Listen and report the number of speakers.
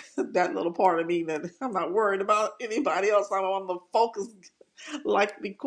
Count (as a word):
one